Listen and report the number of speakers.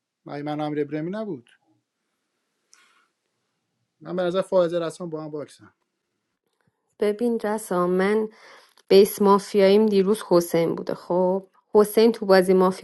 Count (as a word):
two